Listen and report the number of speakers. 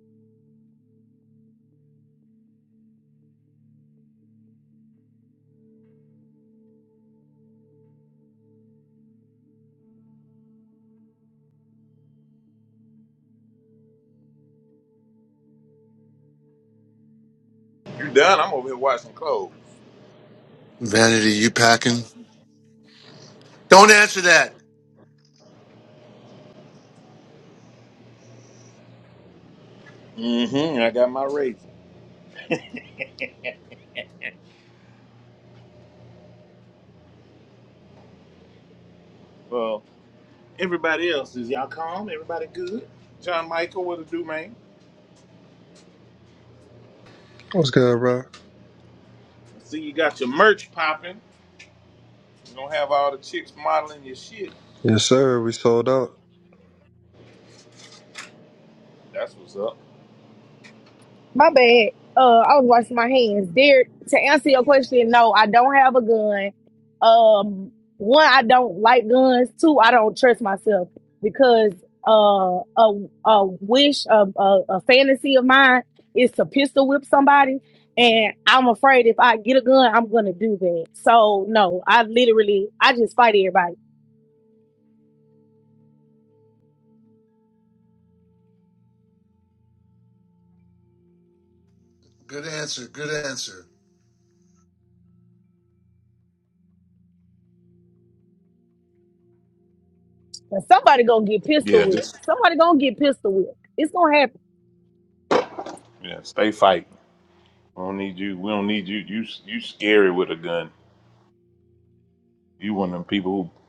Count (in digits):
4